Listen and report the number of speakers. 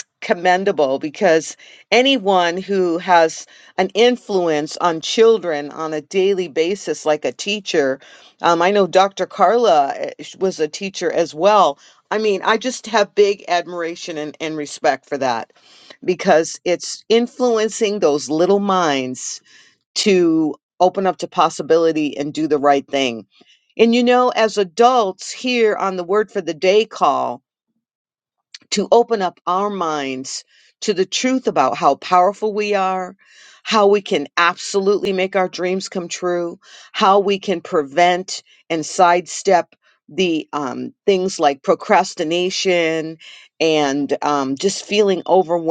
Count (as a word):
one